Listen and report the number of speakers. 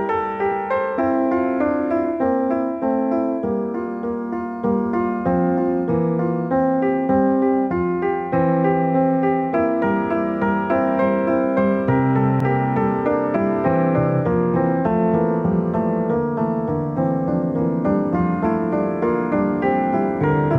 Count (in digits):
0